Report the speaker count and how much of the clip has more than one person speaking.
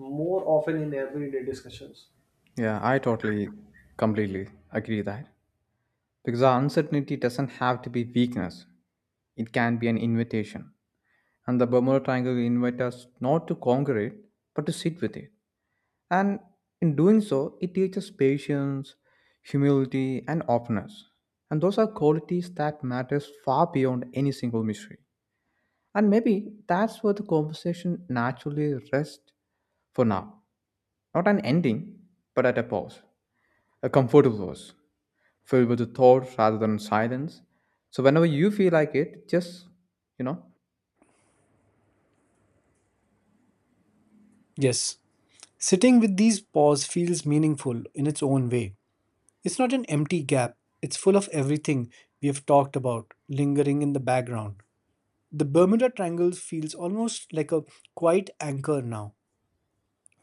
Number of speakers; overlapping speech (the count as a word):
three, no overlap